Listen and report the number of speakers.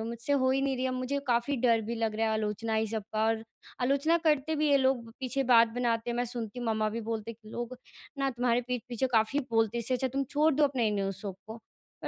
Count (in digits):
1